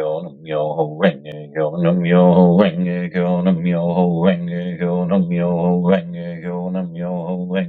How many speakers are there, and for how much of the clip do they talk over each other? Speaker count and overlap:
one, no overlap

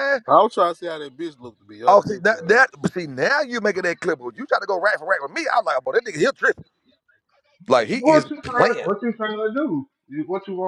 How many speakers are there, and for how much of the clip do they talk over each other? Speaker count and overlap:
three, about 12%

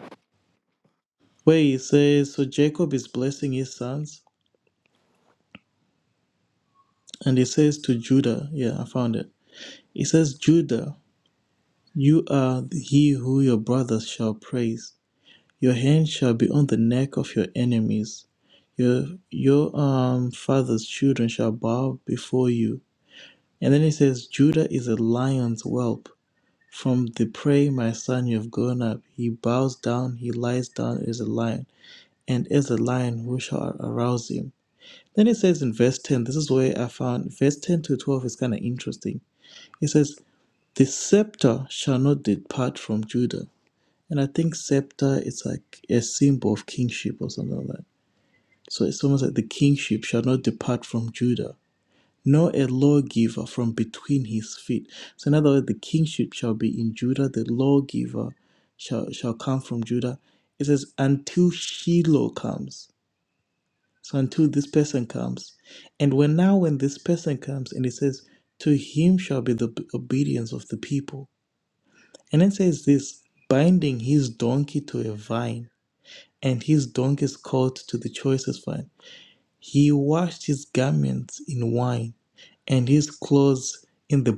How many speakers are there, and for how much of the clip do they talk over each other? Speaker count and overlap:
one, no overlap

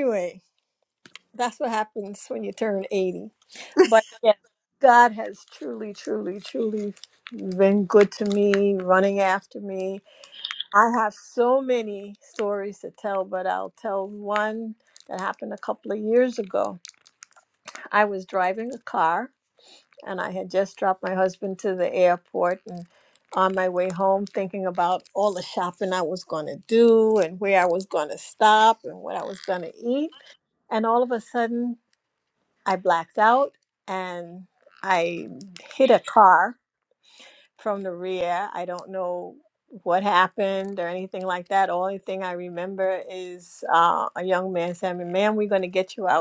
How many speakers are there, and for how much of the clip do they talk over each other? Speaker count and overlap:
one, no overlap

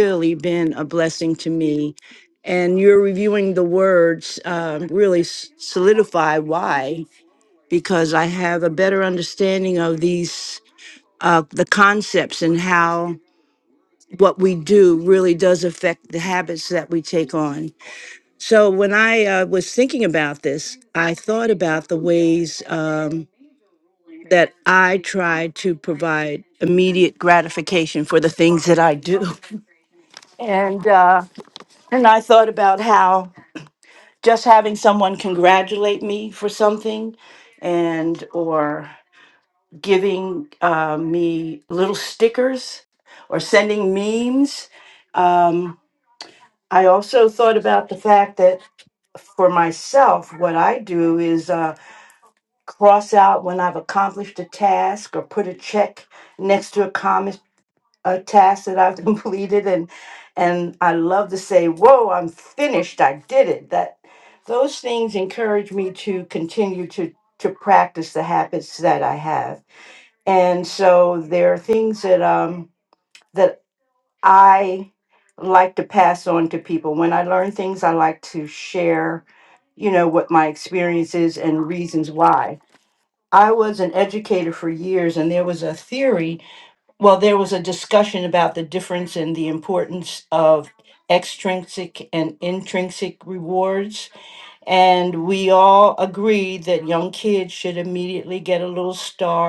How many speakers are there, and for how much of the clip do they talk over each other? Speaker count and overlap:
one, no overlap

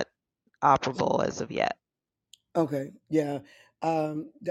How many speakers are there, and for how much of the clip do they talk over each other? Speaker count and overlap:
two, no overlap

